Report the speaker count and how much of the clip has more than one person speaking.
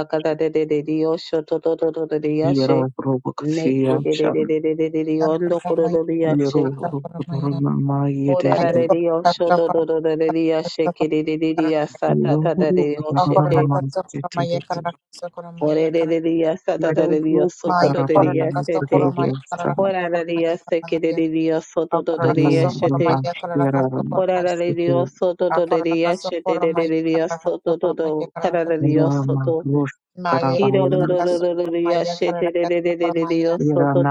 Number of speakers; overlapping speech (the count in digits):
3, about 68%